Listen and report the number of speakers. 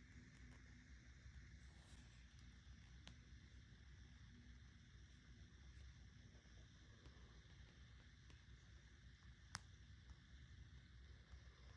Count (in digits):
0